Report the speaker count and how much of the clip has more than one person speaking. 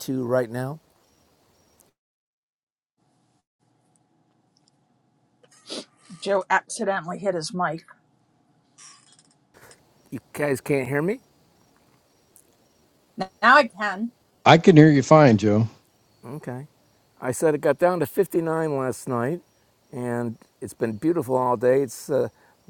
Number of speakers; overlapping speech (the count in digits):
3, no overlap